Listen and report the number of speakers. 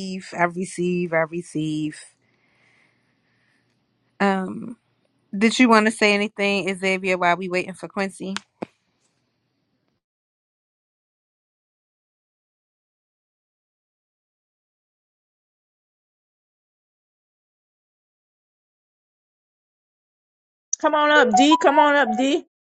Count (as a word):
two